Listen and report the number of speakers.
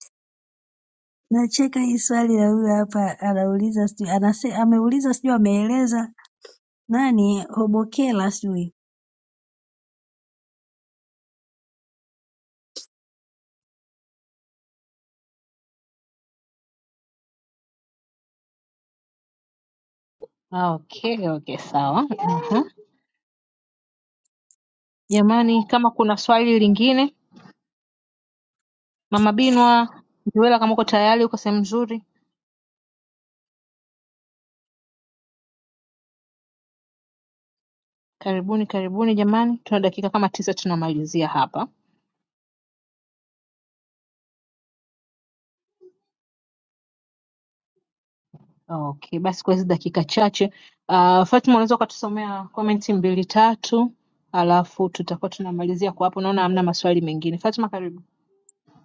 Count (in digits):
2